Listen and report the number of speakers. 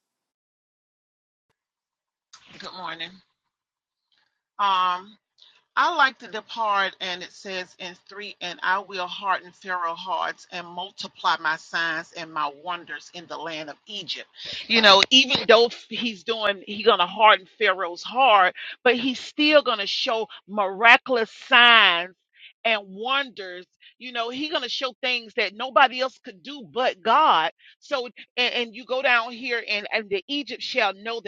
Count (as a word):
one